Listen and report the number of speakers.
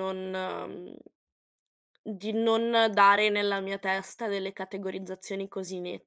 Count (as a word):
one